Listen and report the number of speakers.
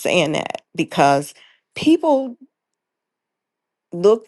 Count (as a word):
one